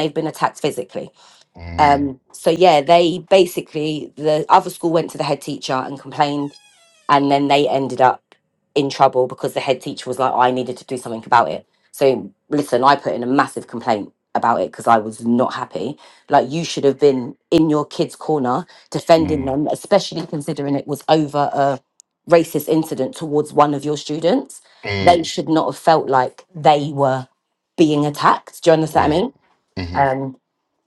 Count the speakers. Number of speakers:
two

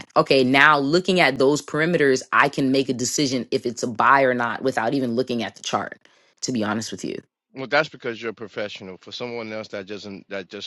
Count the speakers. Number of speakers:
two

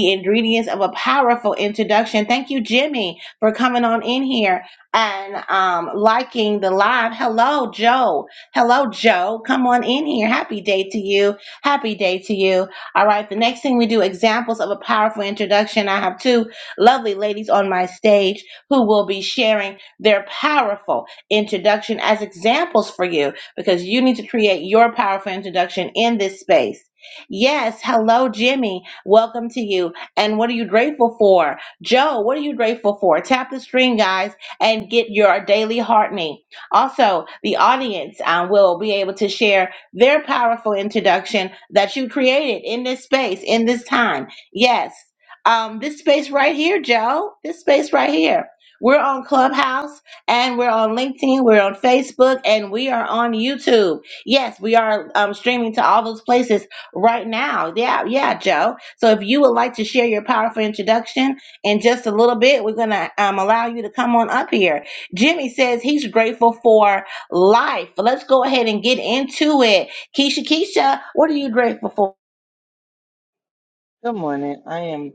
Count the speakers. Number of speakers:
two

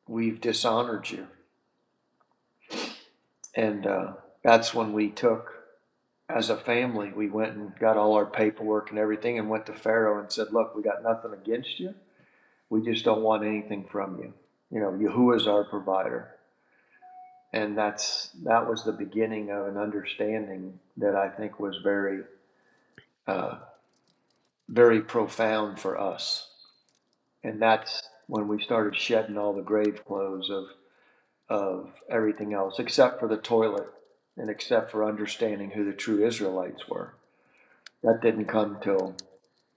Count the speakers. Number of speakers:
one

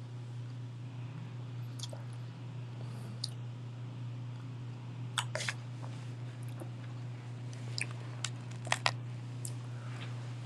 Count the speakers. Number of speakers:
zero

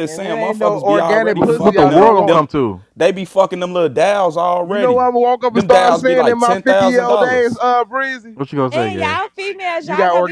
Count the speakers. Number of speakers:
four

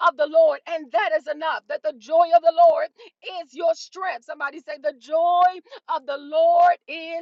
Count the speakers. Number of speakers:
one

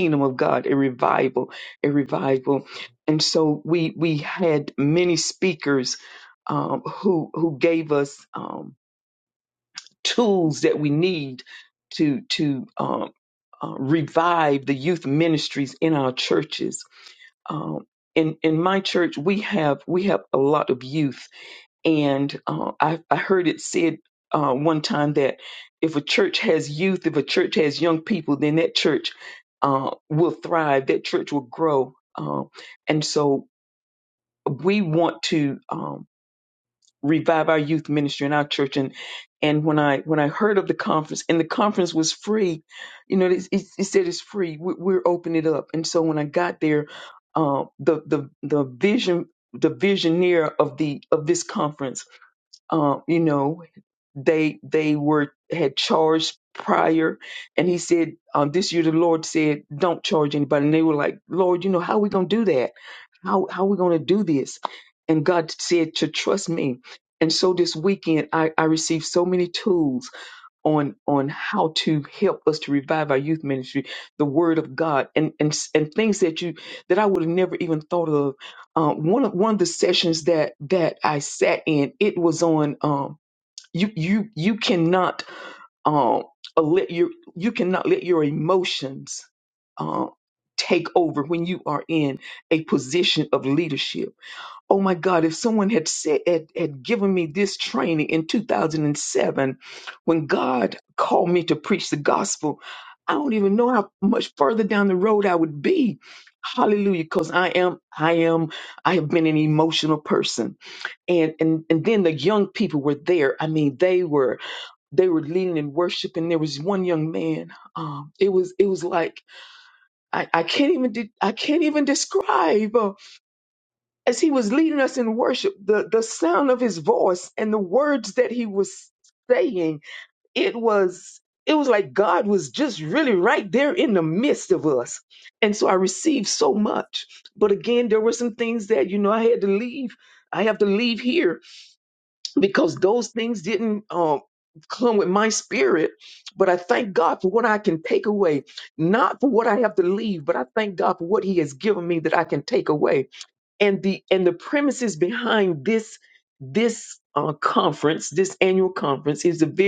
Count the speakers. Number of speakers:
one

